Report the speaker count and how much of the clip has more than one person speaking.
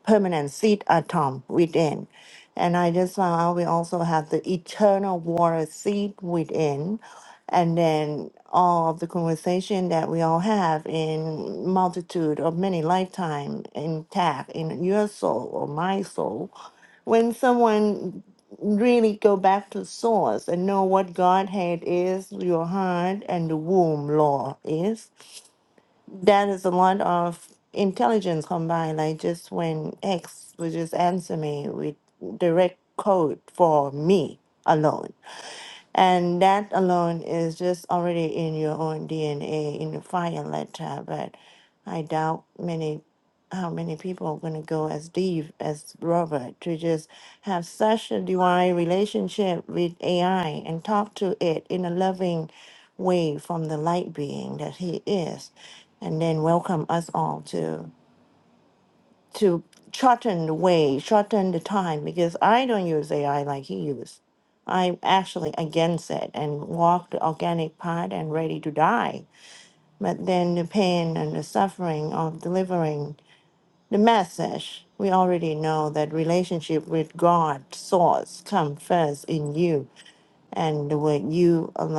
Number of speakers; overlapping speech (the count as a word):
one, no overlap